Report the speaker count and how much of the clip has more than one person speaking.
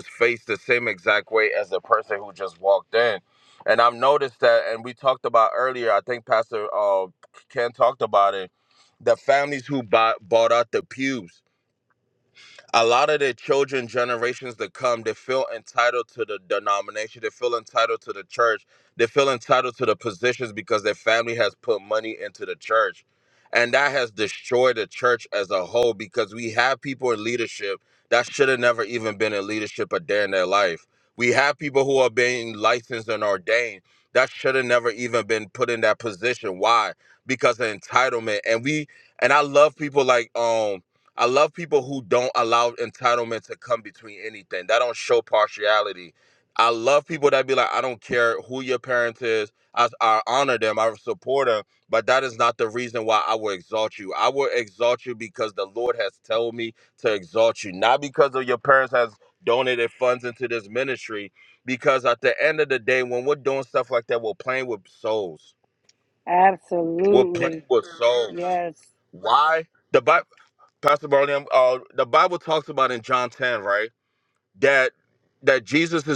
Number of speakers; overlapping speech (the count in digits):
2, about 1%